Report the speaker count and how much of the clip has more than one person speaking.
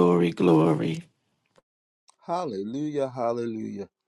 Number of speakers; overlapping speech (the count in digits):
2, no overlap